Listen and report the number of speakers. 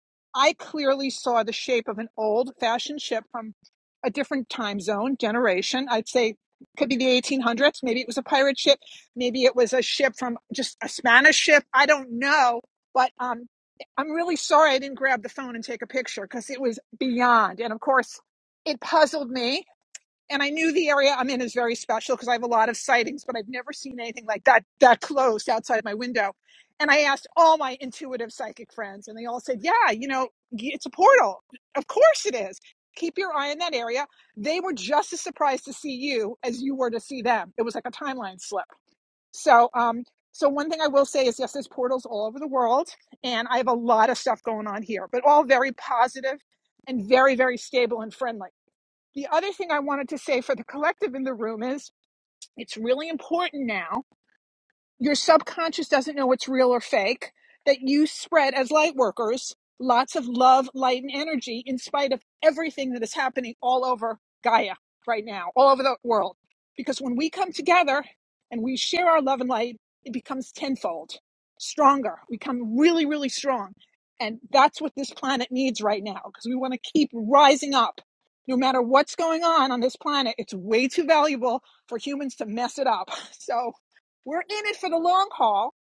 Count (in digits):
1